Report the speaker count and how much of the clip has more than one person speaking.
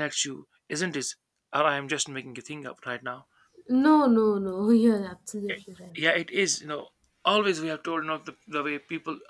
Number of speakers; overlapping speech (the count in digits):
2, no overlap